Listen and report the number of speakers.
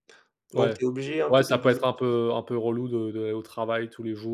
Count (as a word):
two